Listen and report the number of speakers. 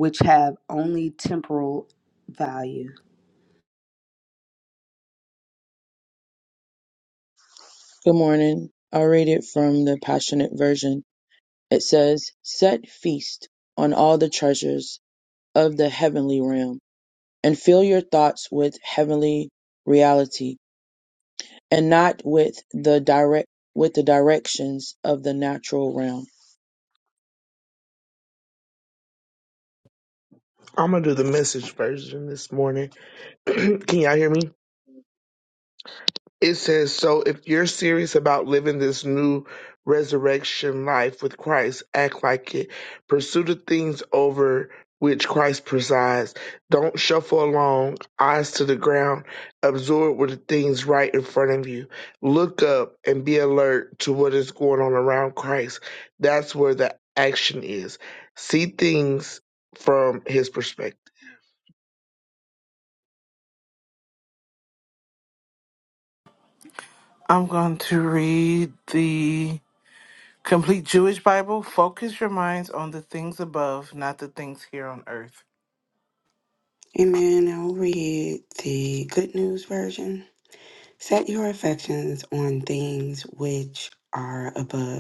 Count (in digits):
5